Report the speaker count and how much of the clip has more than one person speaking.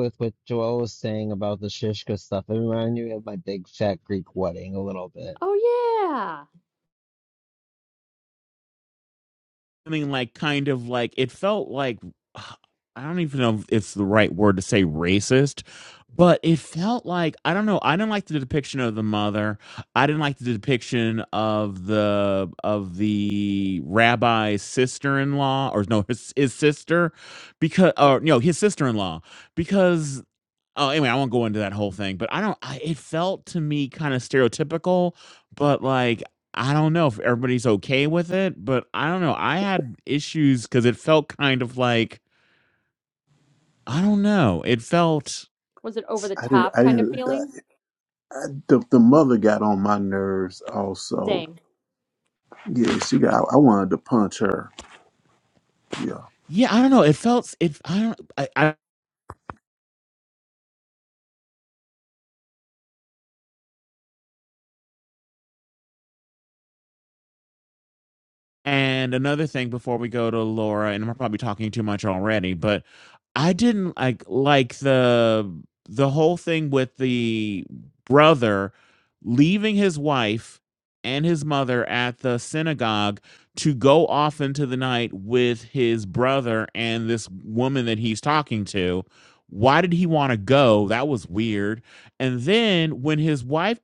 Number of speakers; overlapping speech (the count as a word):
four, about 1%